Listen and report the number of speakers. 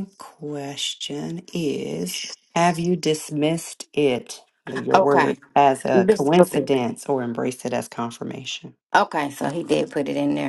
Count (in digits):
2